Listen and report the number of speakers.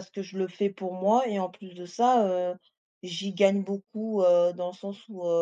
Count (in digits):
1